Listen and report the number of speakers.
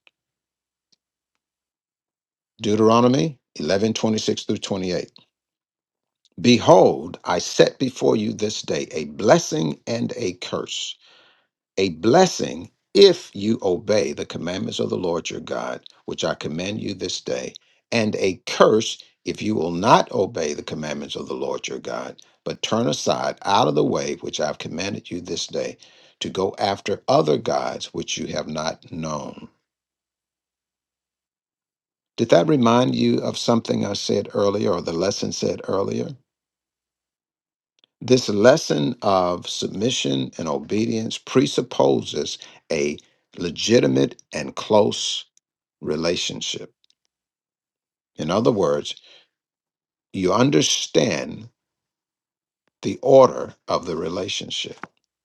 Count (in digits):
1